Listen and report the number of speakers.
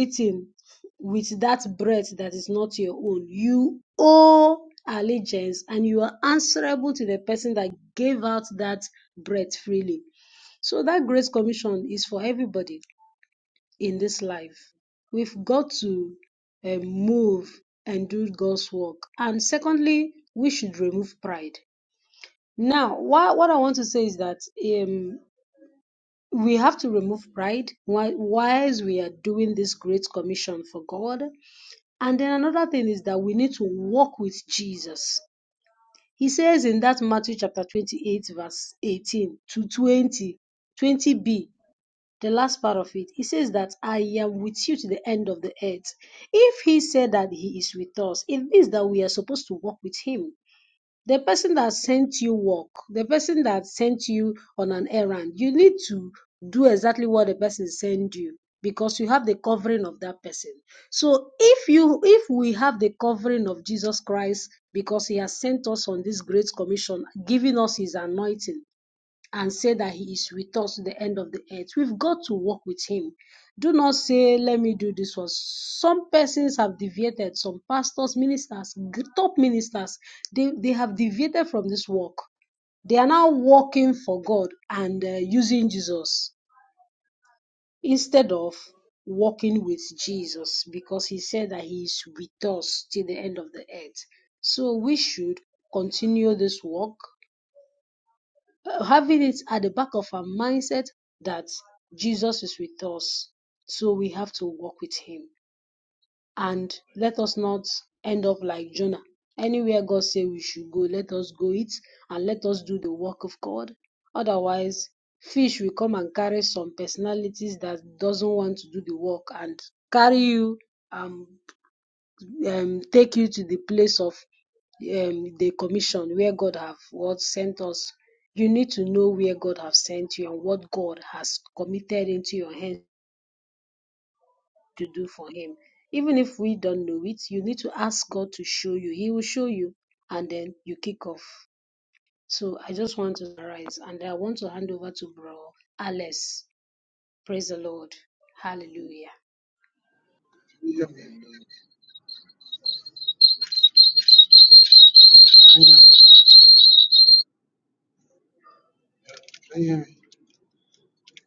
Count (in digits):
2